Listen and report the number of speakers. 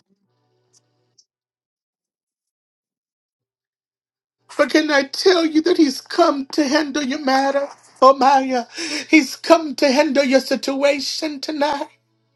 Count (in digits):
1